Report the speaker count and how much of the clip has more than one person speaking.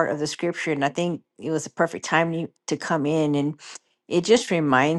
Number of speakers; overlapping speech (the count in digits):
1, no overlap